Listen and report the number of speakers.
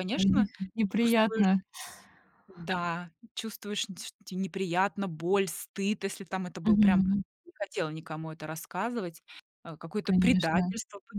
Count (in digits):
2